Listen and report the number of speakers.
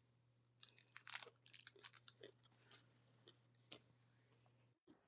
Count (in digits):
0